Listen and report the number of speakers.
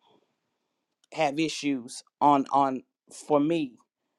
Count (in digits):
1